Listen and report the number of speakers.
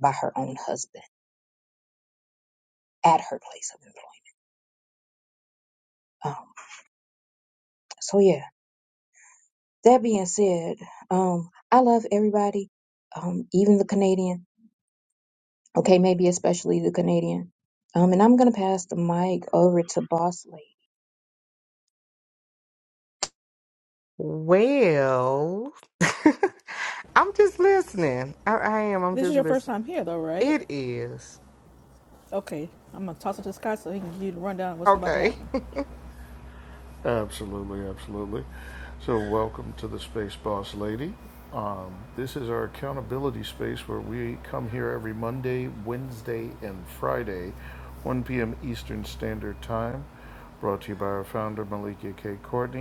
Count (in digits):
4